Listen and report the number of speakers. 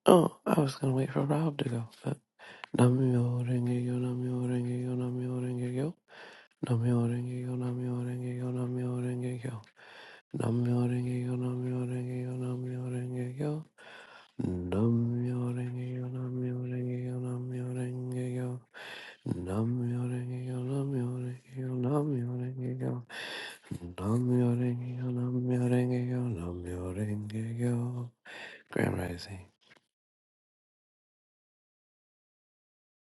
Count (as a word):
one